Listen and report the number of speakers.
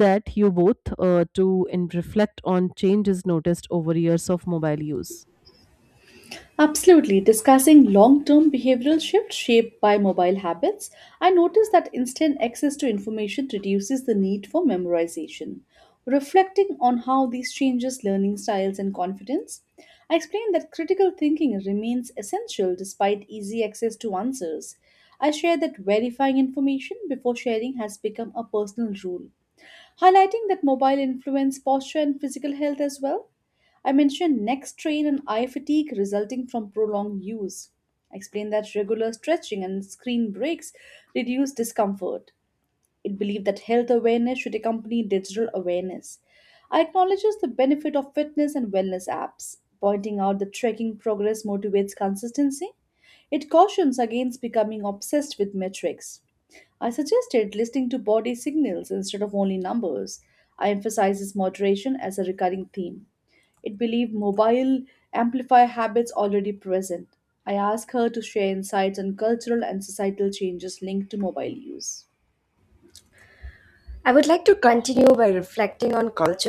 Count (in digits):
3